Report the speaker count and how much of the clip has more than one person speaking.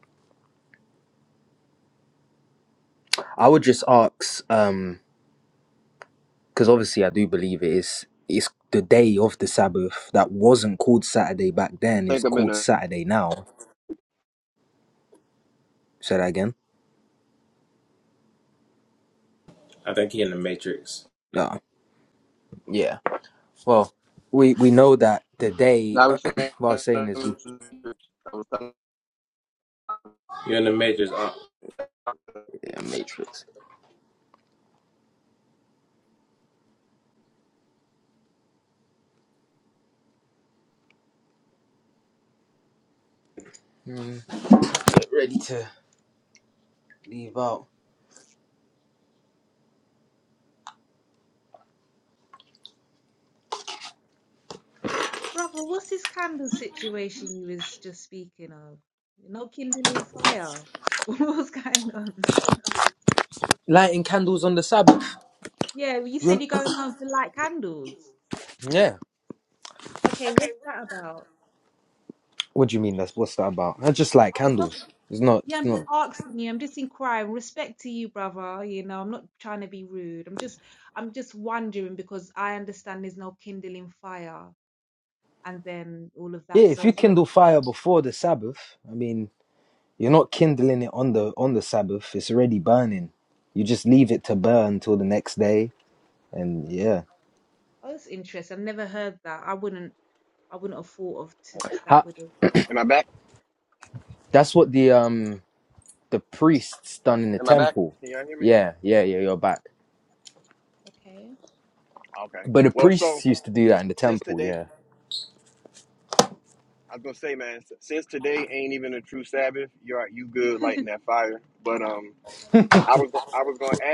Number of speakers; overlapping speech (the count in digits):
4, about 4%